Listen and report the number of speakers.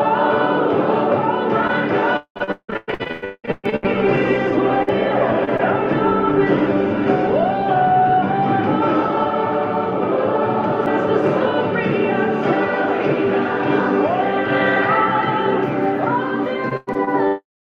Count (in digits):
0